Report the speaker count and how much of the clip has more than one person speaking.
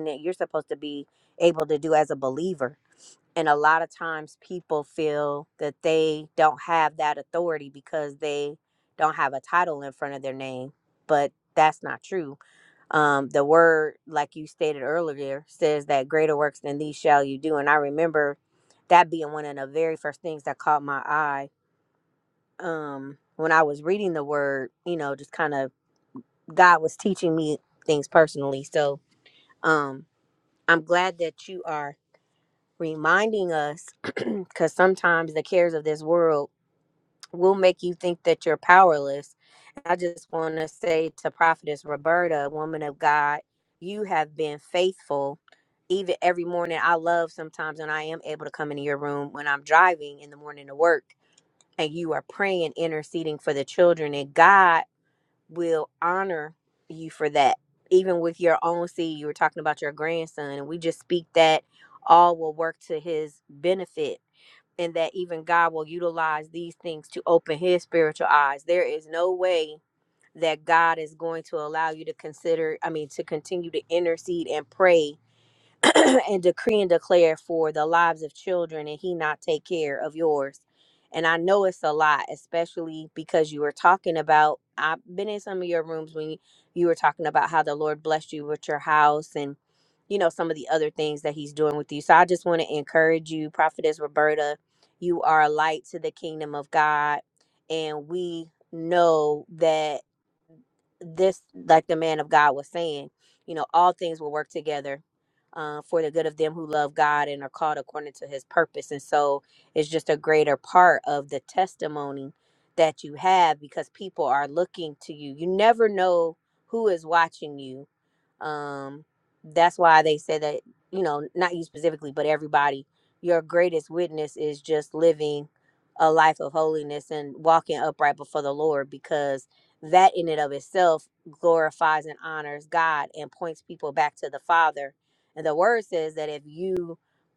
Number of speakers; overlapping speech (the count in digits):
1, no overlap